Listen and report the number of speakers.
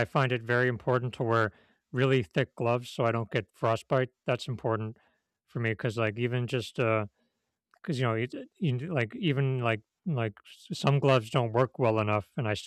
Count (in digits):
1